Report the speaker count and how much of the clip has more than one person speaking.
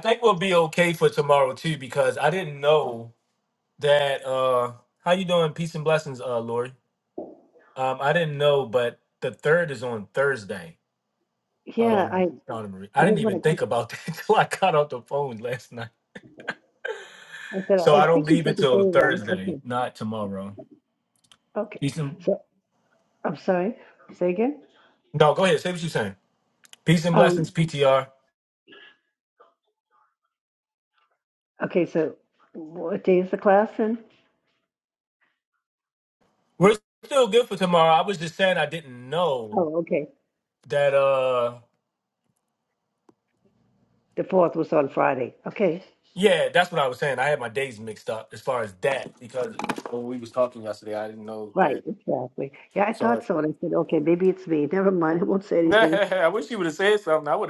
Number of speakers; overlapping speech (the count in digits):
2, about 7%